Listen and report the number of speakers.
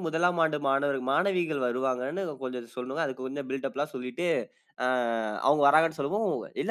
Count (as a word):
one